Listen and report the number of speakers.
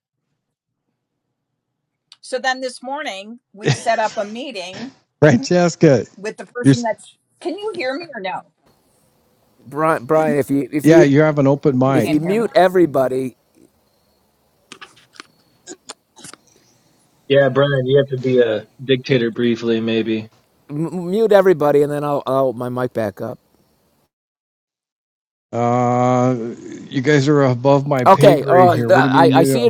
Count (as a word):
four